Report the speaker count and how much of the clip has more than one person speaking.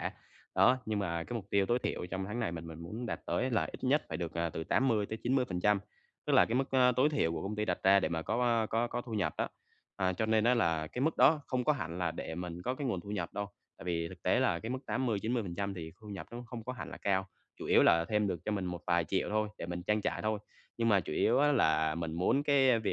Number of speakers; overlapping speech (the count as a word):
one, no overlap